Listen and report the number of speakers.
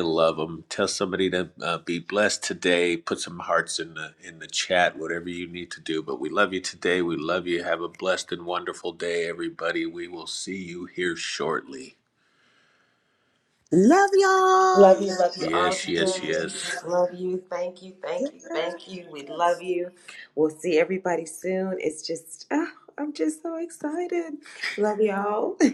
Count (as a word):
three